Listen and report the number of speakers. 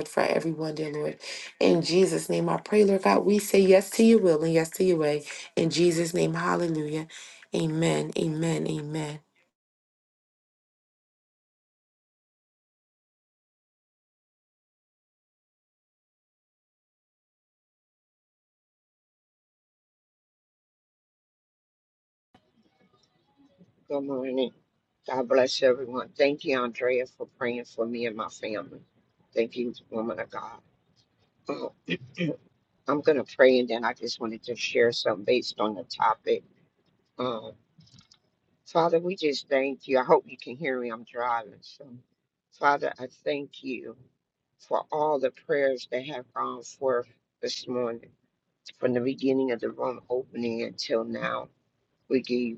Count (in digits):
2